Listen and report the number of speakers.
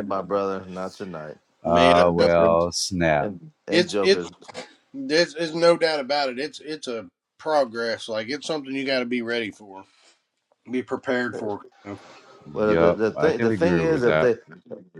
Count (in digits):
3